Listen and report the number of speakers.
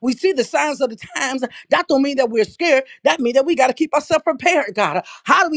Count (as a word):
one